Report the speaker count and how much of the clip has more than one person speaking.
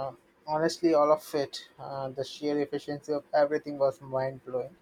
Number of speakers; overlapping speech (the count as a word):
one, no overlap